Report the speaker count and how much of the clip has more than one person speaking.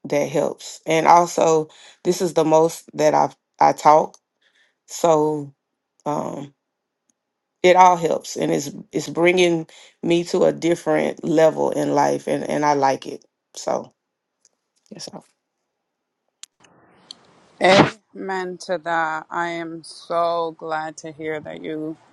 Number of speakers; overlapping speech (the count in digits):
2, no overlap